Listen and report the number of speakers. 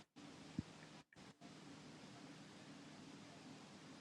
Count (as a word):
zero